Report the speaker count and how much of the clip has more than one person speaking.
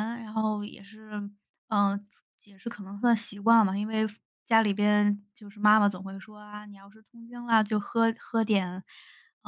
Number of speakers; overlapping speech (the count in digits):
1, no overlap